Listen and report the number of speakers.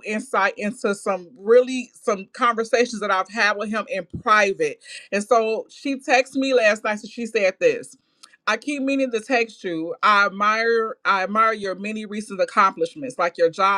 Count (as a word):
one